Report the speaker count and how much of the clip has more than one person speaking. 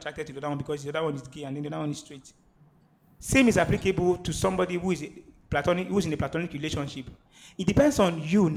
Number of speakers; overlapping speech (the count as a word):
one, no overlap